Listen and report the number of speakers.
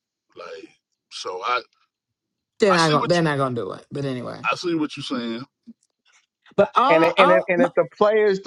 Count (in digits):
3